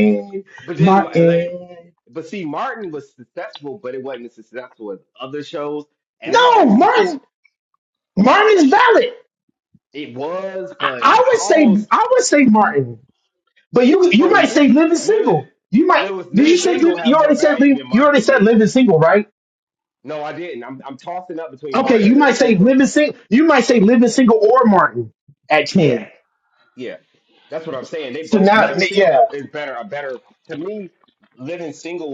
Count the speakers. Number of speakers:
two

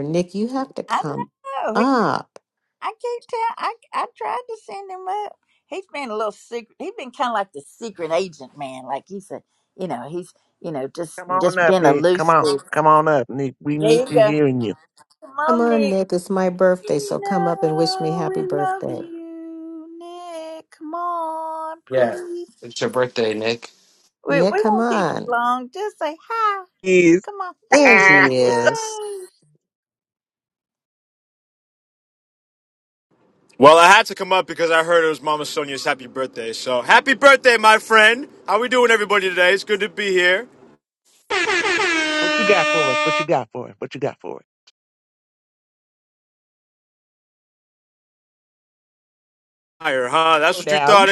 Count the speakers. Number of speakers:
five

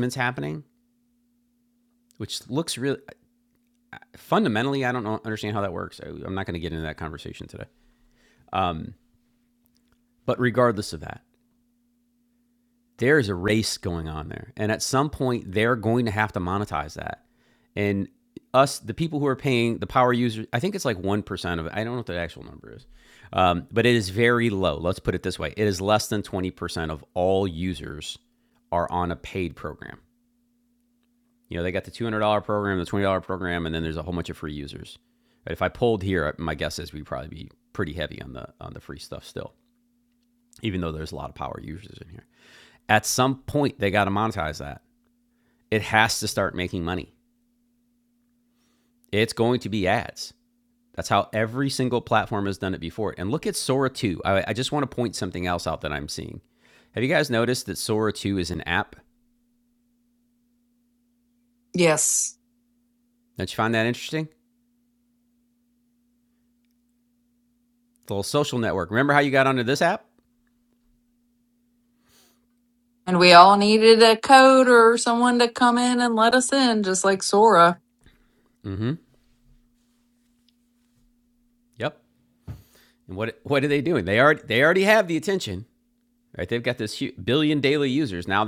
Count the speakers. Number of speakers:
two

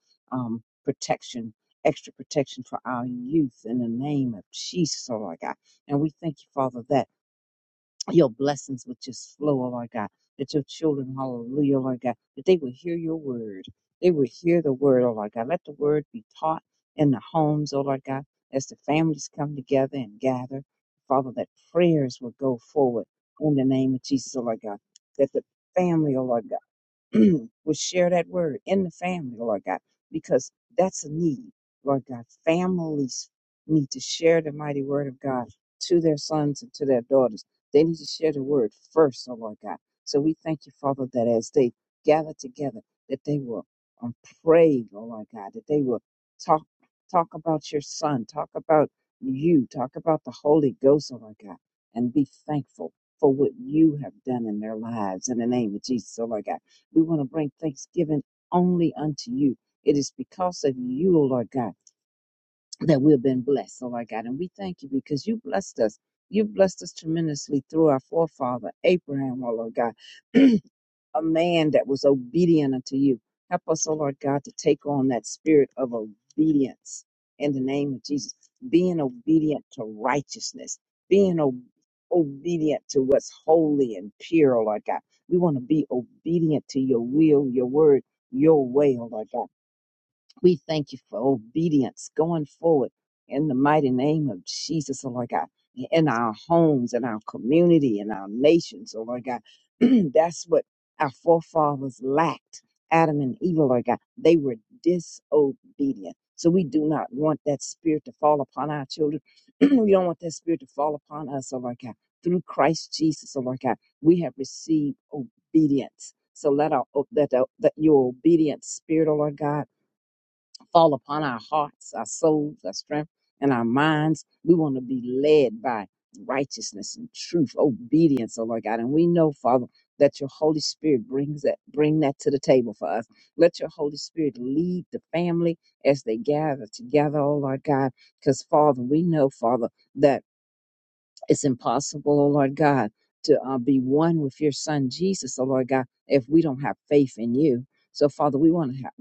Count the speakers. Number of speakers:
one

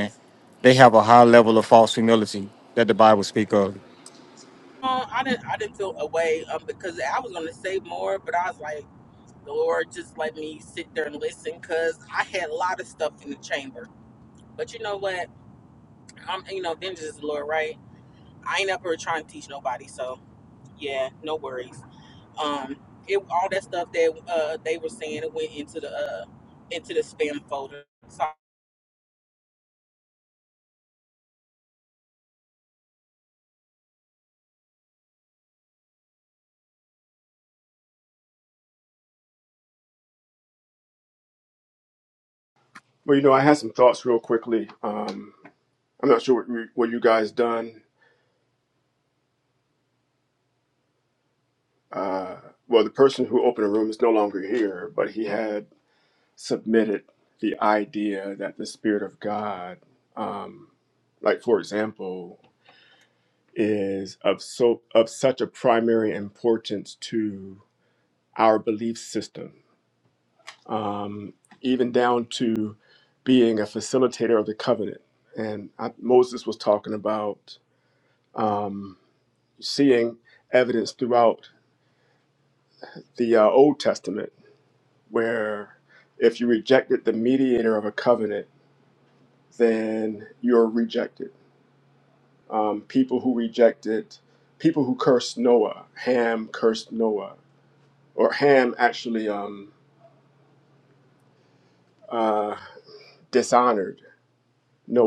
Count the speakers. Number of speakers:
three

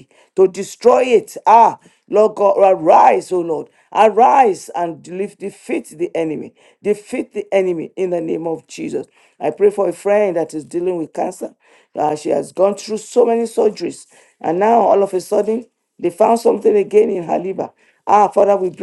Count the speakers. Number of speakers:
one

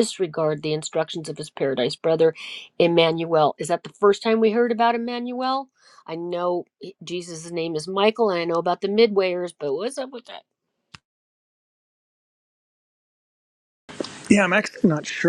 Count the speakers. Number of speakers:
two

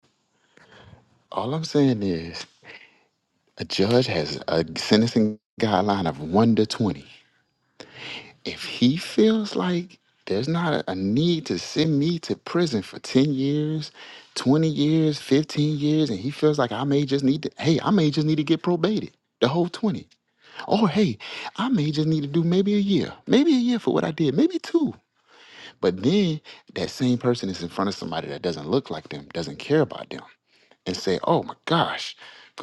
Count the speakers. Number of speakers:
one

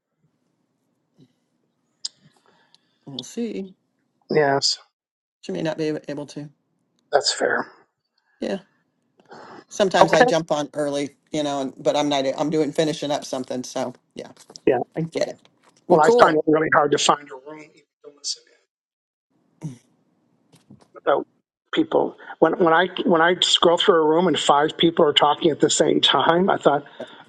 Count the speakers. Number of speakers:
two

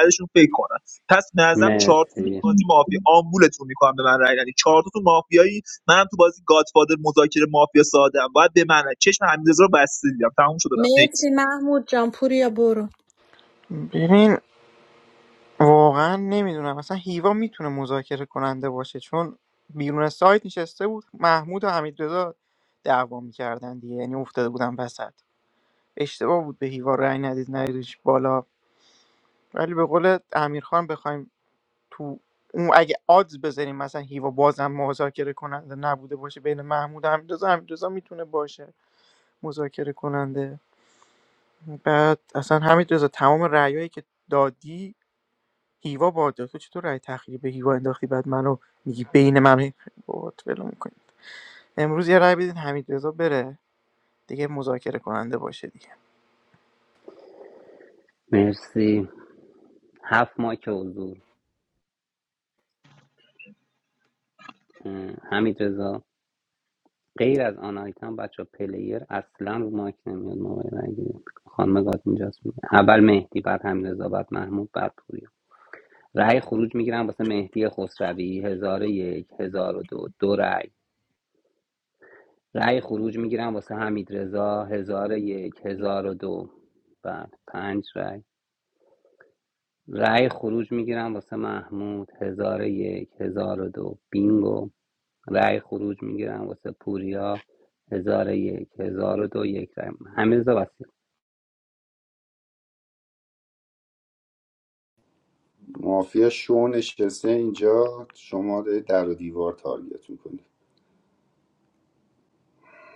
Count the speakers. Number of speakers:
five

